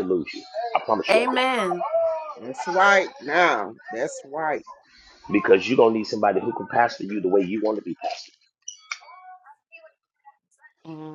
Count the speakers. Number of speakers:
3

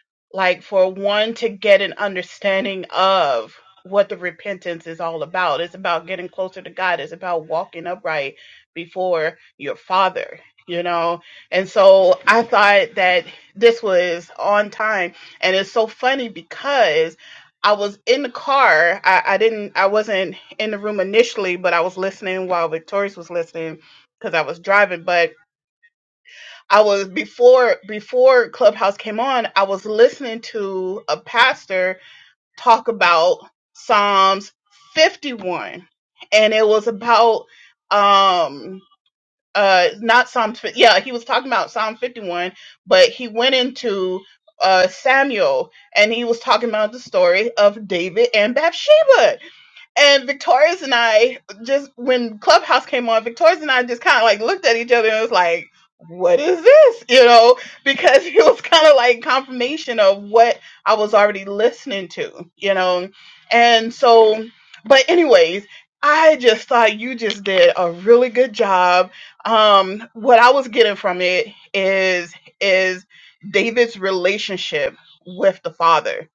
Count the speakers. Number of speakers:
1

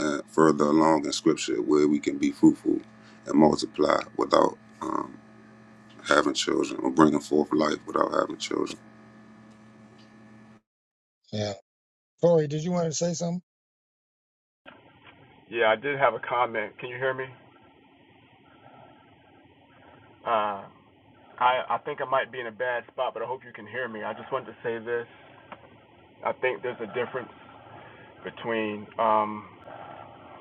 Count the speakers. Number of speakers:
3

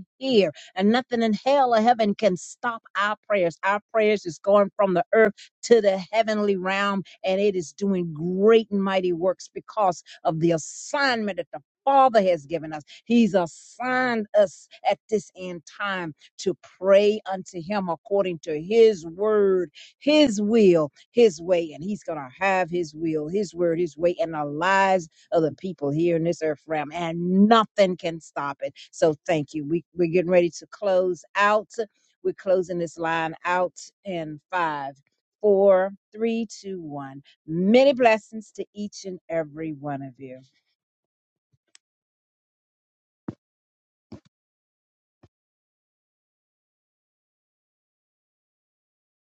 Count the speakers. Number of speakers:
1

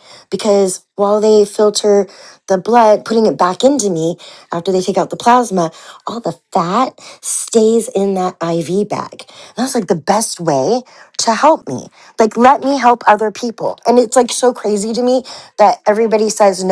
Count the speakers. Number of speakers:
1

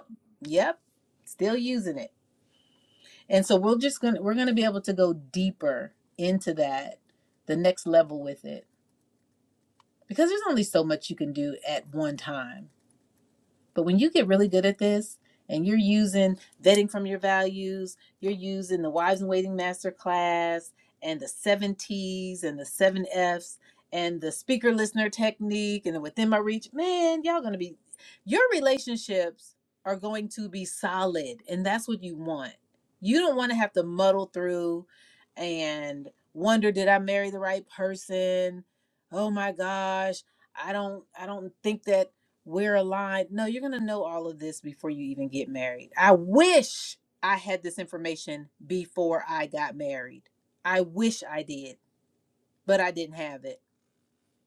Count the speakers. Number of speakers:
1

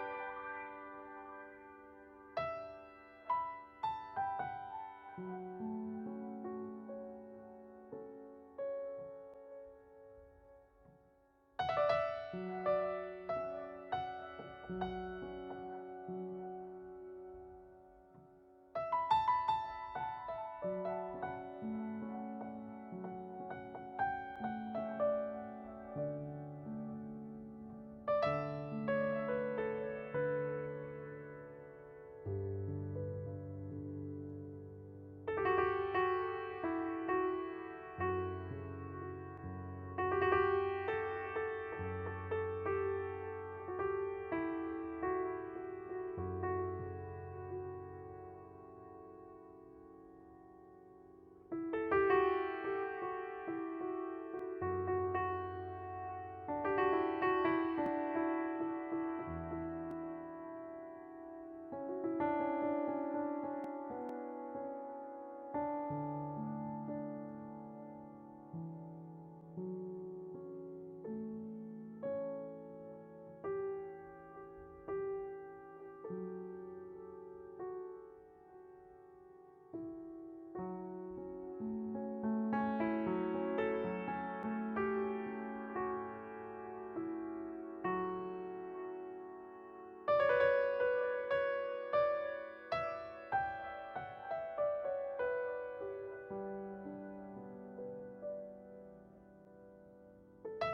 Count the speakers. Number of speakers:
0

